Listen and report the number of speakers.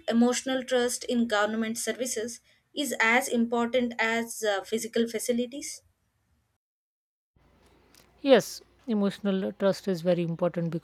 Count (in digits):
2